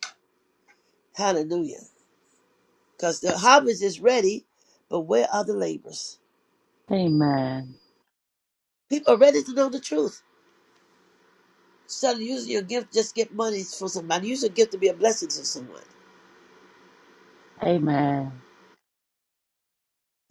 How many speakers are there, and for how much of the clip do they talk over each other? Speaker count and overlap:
2, no overlap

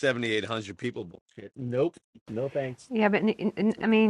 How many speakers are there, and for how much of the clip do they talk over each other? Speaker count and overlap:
2, no overlap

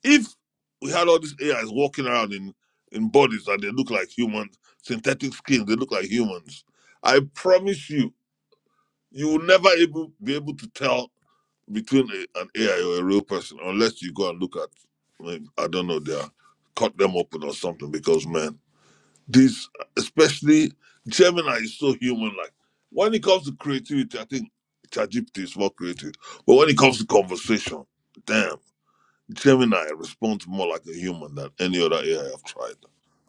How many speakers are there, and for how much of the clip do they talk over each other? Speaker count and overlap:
1, no overlap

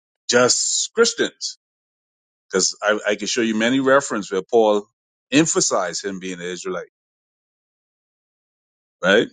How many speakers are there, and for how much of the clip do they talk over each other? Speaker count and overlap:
1, no overlap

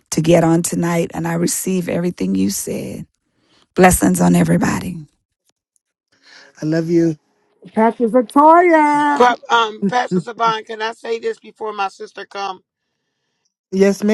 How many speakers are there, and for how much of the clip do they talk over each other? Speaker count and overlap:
3, no overlap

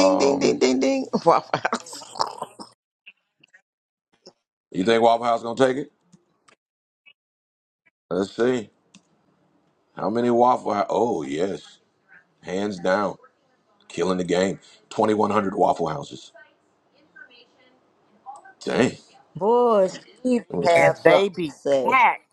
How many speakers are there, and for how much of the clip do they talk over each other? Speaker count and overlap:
3, about 8%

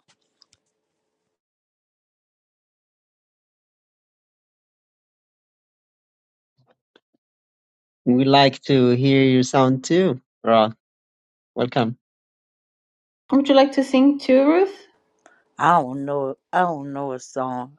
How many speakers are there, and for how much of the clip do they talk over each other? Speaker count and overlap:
3, no overlap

